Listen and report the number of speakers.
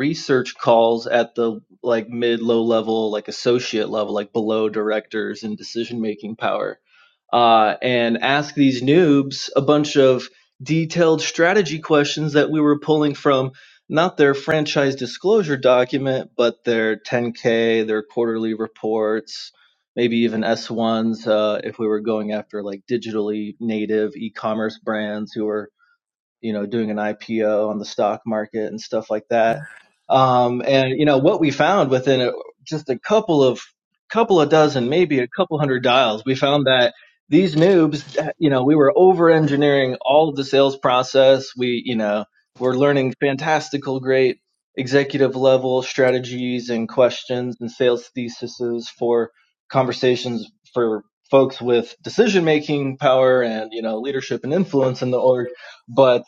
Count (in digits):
1